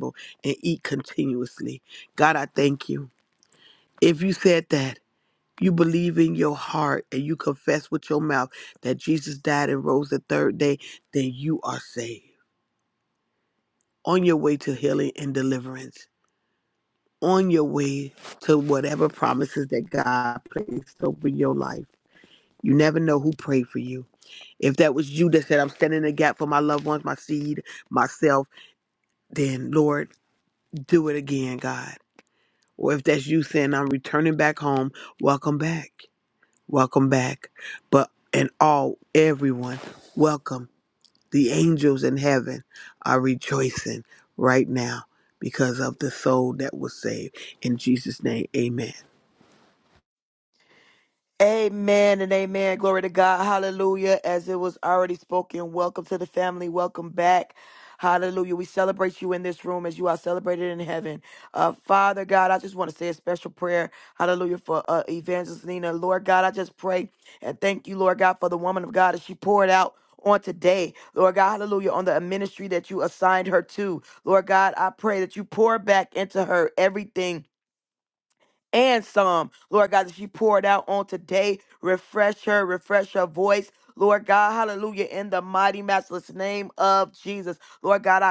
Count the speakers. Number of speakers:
2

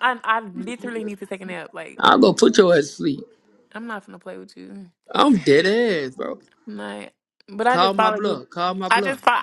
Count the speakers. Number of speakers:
2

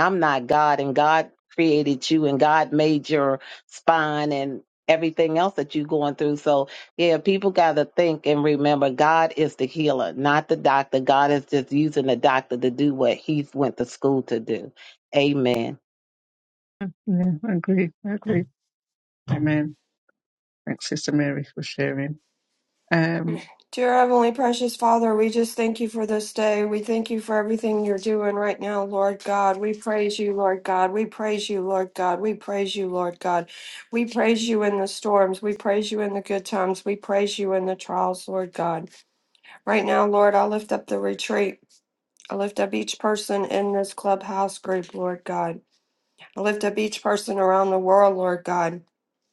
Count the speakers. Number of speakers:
3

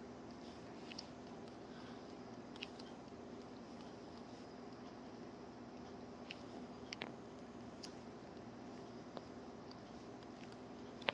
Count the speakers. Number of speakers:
0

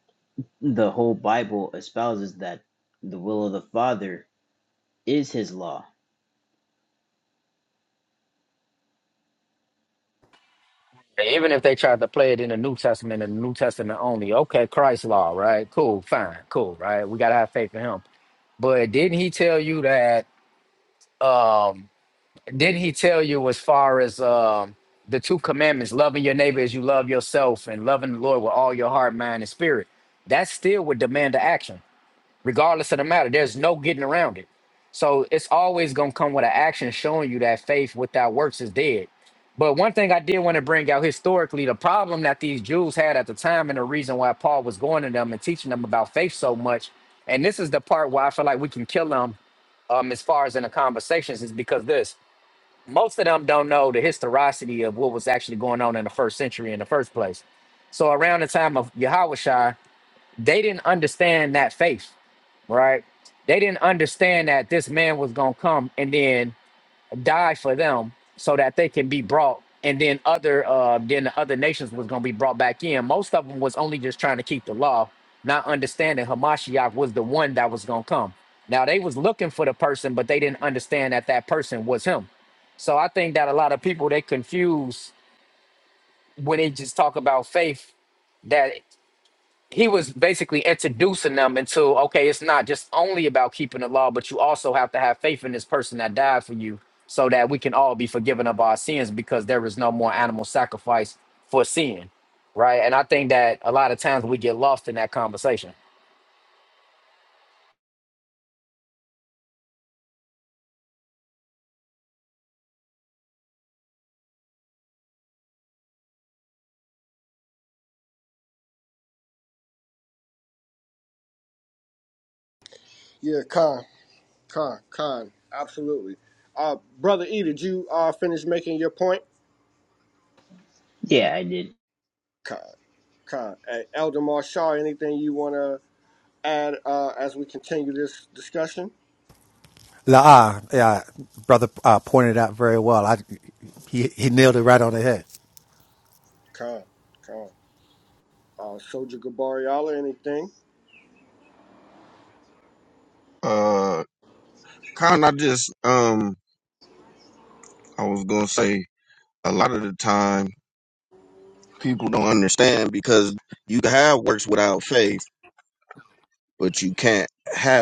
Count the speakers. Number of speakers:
5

